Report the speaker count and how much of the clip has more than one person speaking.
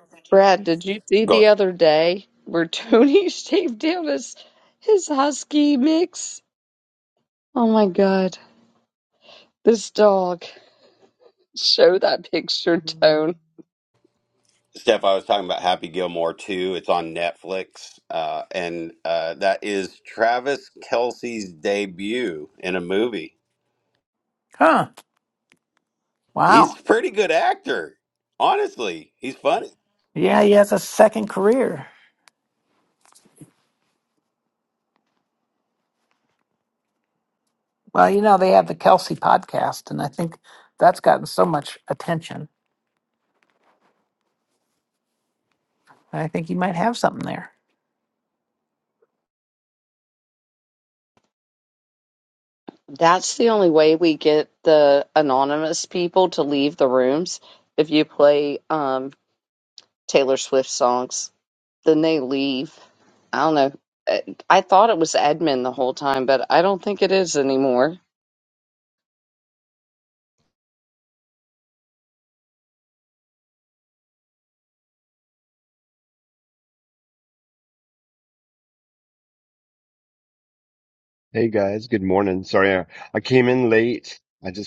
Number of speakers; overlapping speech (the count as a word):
four, about 1%